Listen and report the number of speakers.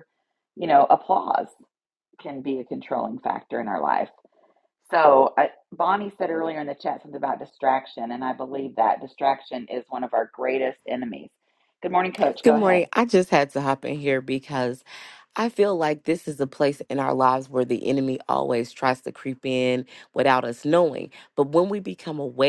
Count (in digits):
2